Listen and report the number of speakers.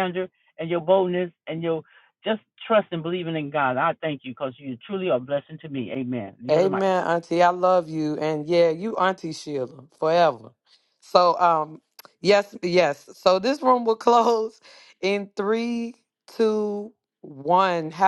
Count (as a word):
two